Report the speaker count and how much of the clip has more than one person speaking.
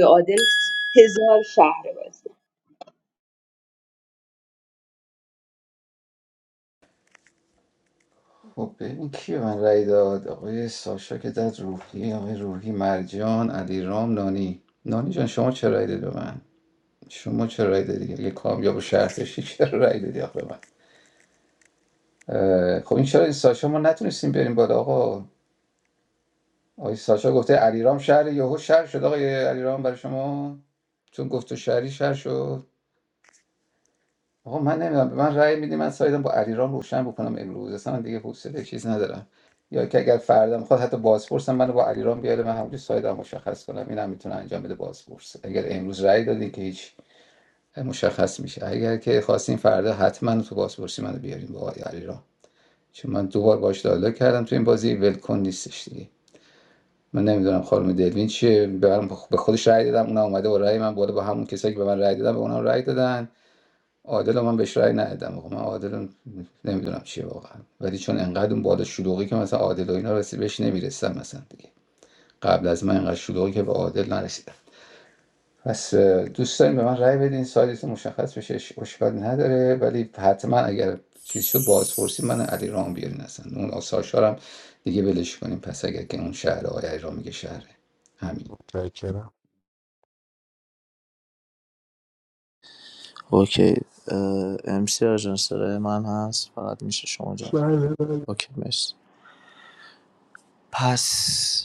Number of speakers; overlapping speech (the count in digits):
4, under 1%